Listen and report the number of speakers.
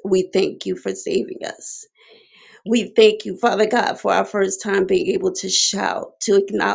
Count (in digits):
1